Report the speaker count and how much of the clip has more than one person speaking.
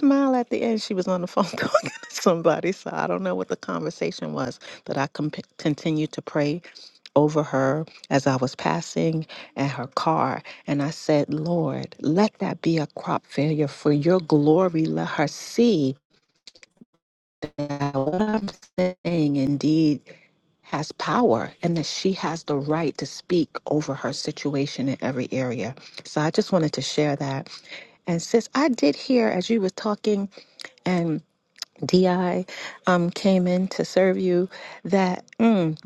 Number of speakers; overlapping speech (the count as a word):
one, no overlap